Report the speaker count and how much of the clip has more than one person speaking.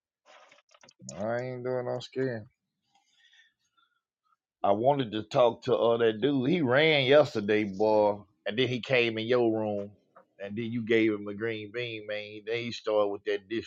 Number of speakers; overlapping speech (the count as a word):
one, no overlap